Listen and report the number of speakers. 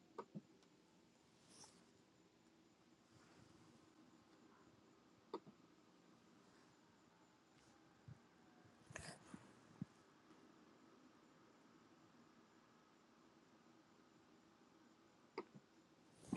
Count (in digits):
0